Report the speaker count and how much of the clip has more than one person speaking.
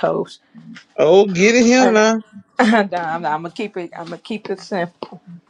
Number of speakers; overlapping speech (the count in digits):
2, about 5%